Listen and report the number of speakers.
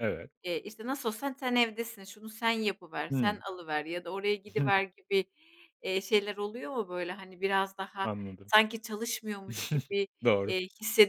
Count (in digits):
2